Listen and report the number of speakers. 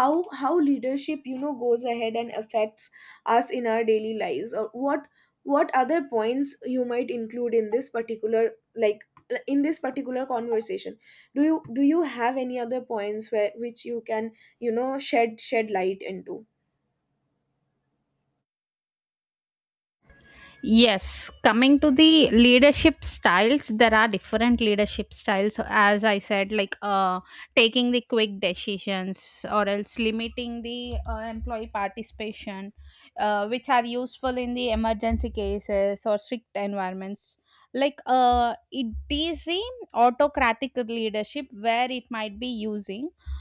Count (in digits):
2